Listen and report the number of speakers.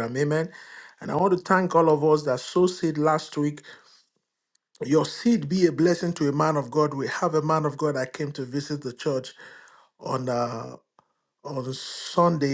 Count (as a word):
one